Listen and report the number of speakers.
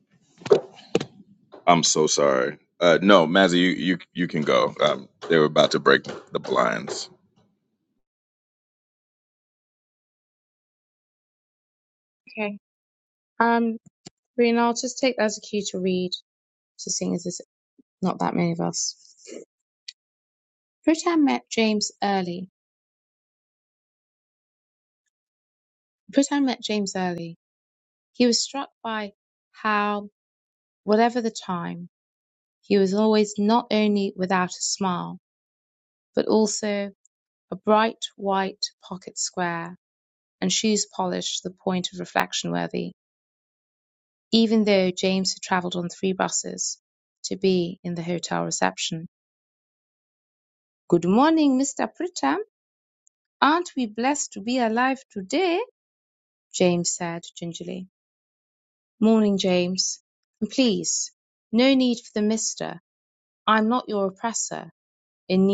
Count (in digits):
2